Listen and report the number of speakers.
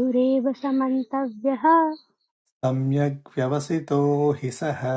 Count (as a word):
two